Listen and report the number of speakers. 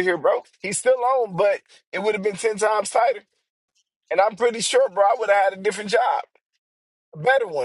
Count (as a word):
one